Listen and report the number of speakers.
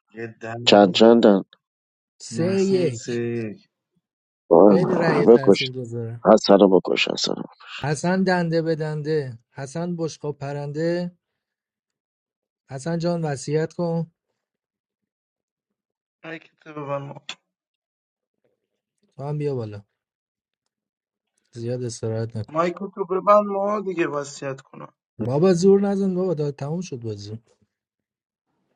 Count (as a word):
four